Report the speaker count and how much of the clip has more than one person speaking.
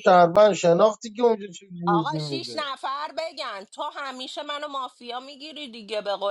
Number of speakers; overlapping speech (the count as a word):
two, about 11%